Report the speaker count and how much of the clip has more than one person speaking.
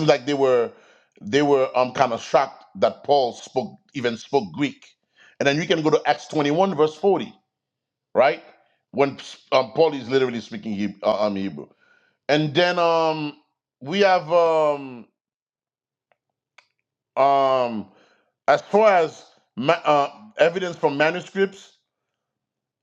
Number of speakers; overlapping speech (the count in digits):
1, no overlap